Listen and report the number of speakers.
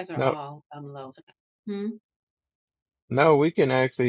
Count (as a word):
two